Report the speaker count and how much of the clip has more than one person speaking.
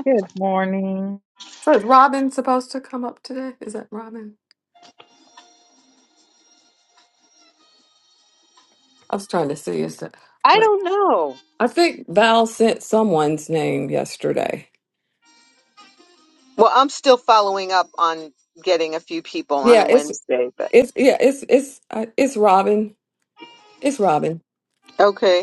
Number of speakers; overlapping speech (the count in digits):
3, about 3%